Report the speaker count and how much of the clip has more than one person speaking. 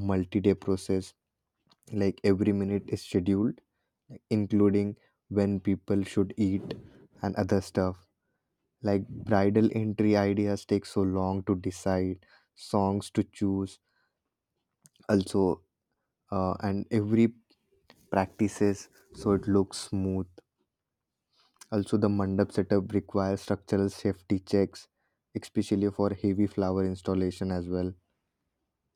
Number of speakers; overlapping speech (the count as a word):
one, no overlap